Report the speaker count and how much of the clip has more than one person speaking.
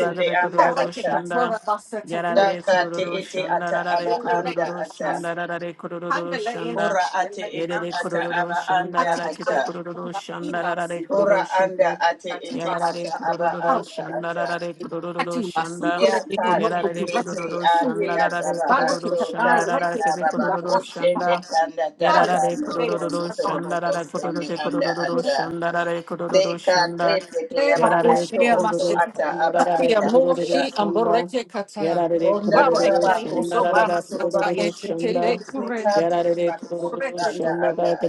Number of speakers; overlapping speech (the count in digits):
3, about 82%